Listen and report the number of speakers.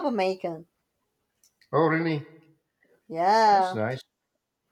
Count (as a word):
two